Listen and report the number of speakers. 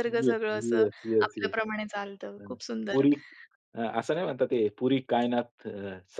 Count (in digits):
2